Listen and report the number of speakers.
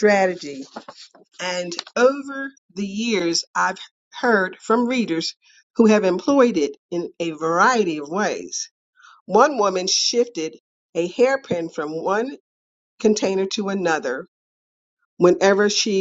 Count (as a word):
one